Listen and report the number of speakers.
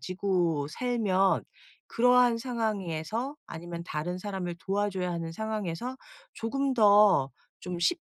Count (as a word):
one